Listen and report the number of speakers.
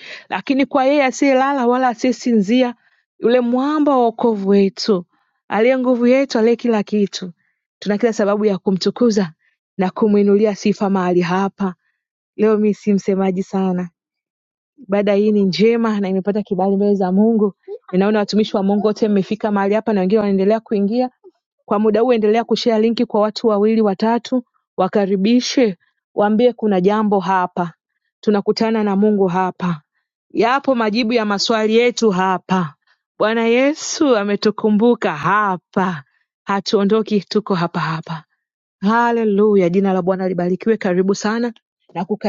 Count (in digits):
1